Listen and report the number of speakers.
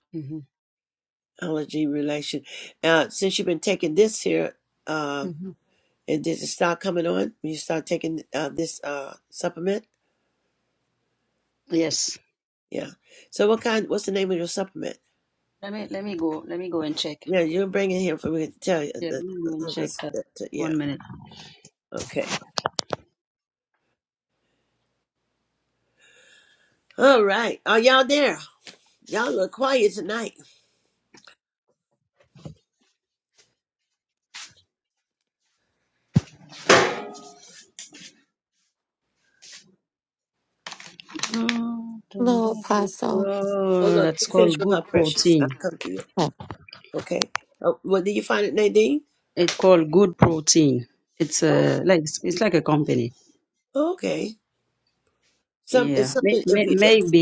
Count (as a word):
three